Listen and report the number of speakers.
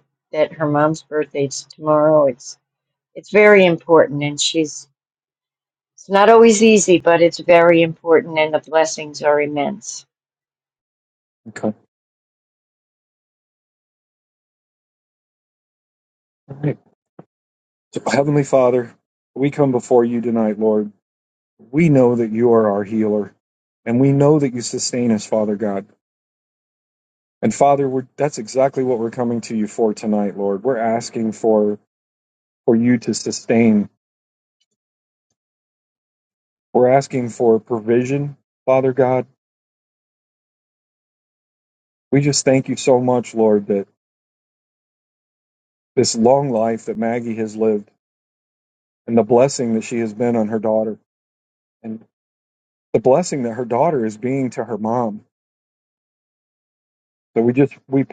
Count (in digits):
2